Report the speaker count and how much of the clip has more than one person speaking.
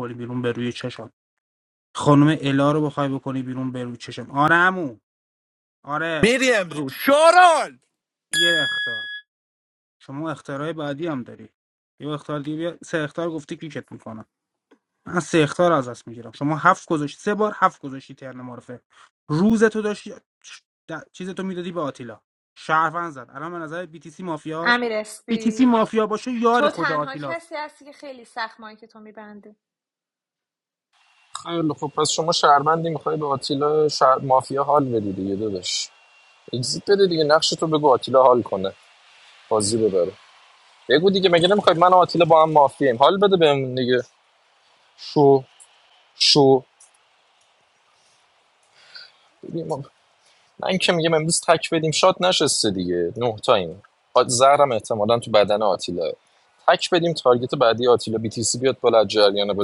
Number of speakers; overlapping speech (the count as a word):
four, about 2%